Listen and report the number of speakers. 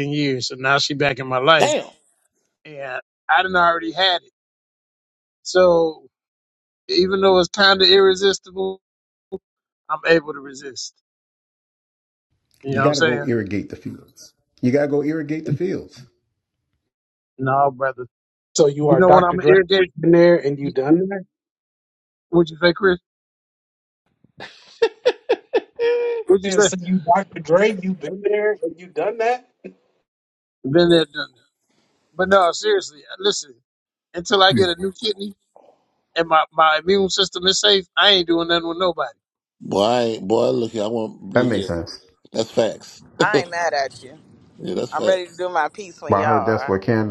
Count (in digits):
5